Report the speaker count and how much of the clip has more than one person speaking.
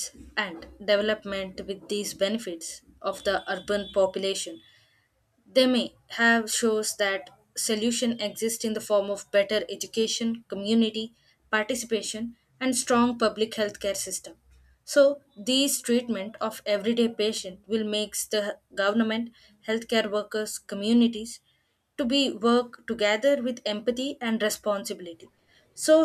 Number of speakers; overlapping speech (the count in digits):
1, no overlap